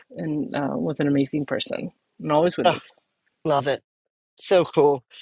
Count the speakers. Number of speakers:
2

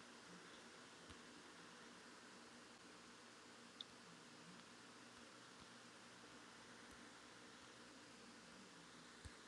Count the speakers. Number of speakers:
0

